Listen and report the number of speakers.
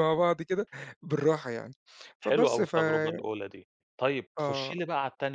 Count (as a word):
two